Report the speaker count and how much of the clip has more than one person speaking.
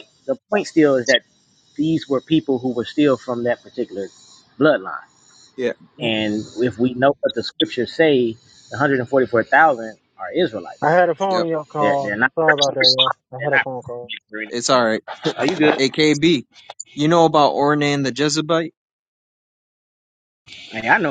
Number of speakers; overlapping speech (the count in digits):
3, about 5%